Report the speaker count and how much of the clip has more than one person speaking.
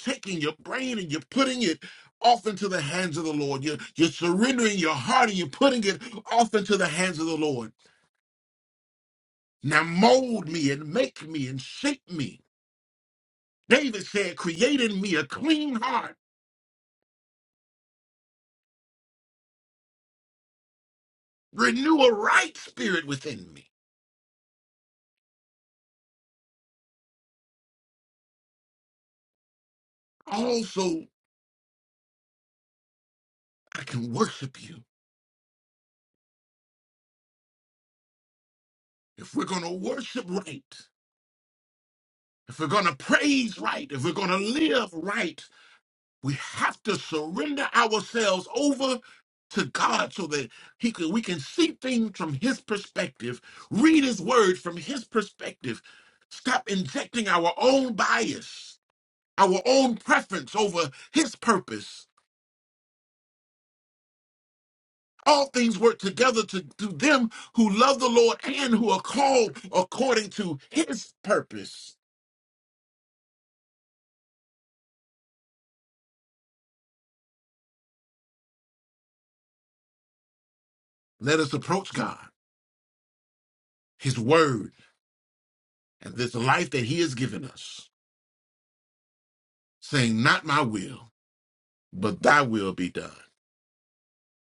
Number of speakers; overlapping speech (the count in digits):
1, no overlap